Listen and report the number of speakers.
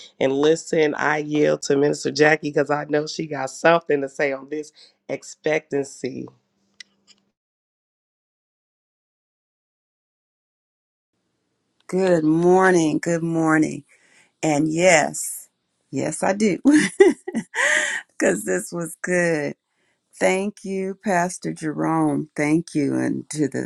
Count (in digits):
2